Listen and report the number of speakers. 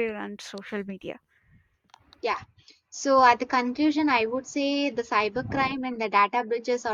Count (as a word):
two